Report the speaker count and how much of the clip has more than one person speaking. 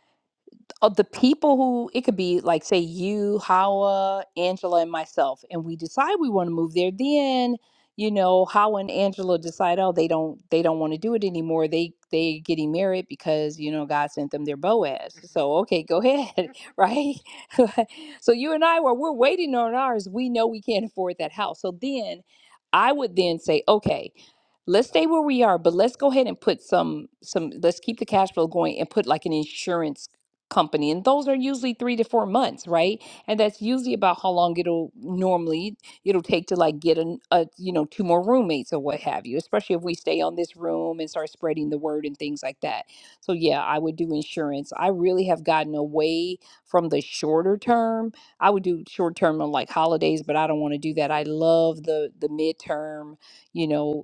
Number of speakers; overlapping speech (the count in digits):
1, no overlap